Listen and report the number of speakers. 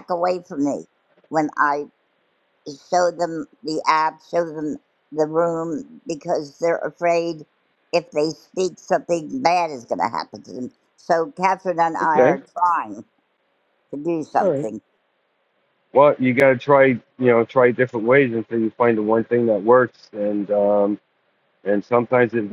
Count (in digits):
2